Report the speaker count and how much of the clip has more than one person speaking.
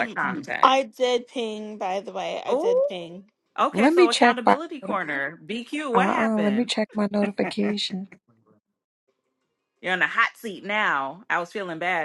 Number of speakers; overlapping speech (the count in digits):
3, about 21%